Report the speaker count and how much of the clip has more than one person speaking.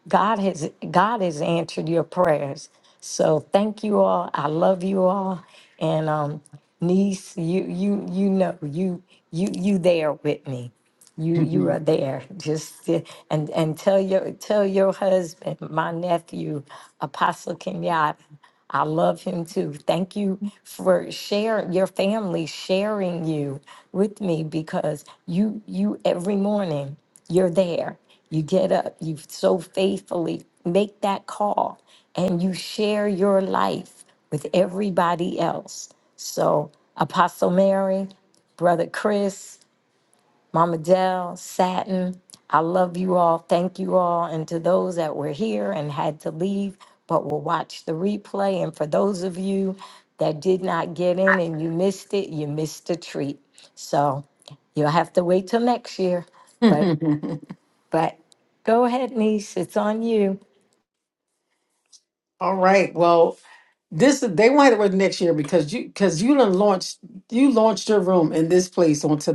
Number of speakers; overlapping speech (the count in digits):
2, no overlap